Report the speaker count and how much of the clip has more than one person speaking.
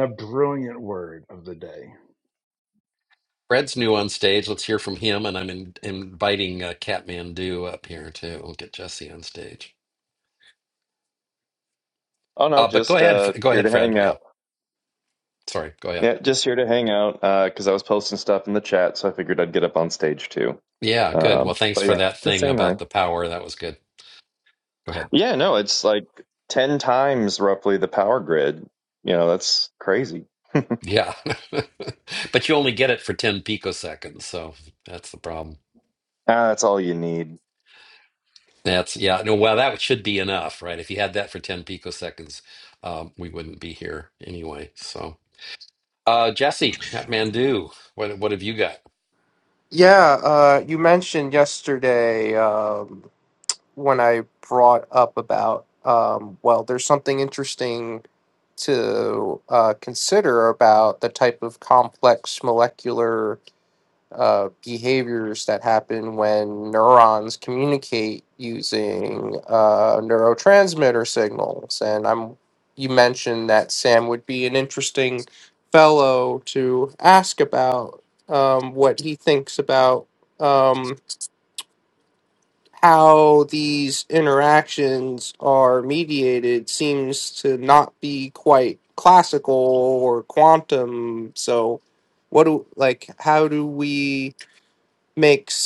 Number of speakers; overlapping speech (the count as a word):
four, about 3%